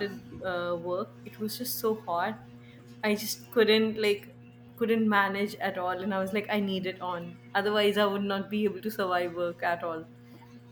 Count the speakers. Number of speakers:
one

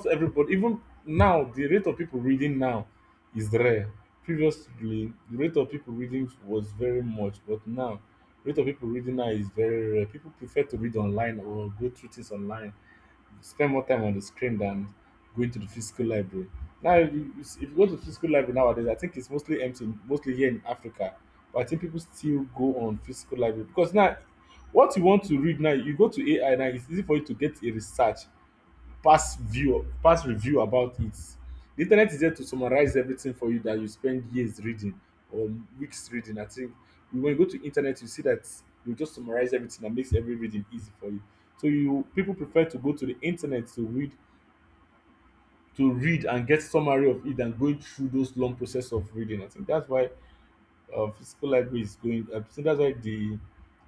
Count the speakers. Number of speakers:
one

